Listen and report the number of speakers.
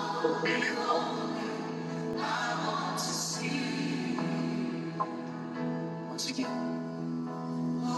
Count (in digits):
0